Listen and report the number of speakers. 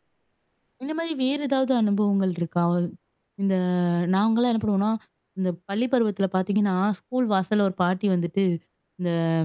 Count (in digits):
1